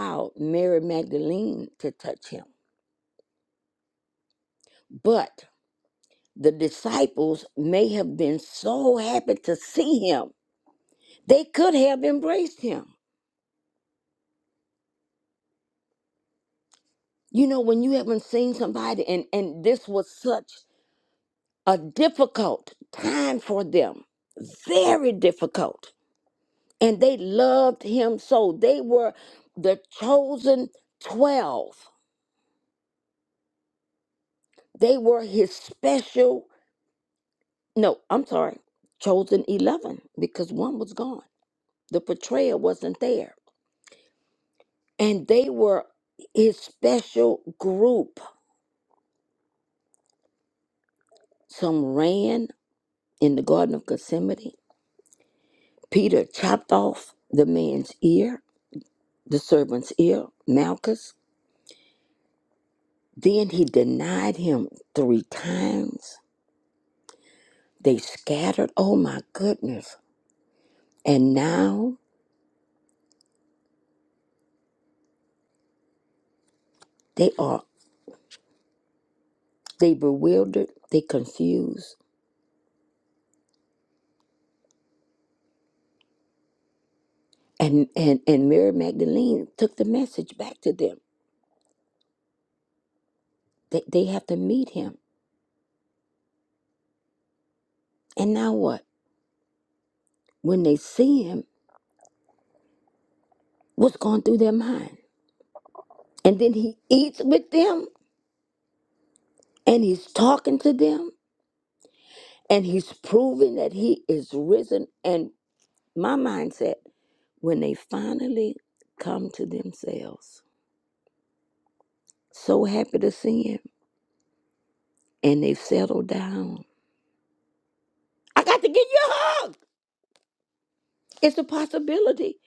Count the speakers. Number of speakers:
1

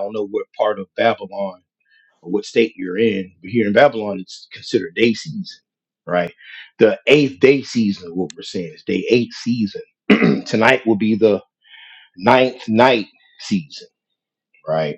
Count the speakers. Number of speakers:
1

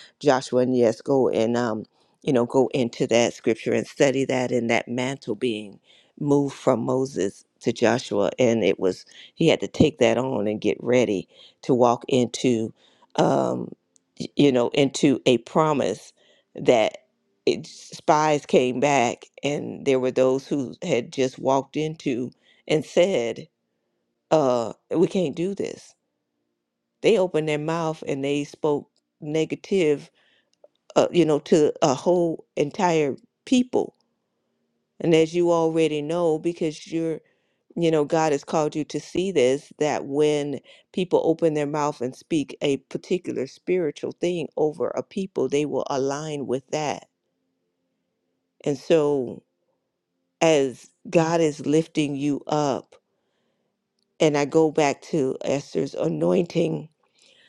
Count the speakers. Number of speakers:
1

